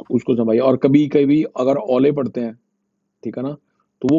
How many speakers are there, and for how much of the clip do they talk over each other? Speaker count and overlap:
one, no overlap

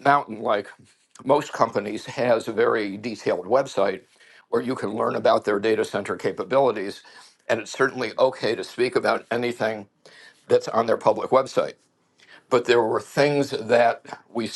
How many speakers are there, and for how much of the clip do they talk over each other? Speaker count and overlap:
one, no overlap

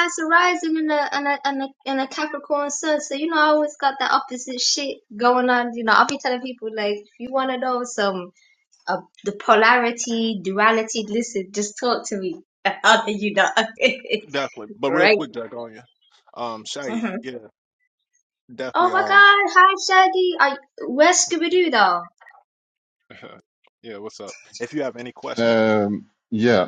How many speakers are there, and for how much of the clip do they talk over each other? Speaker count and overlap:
three, about 5%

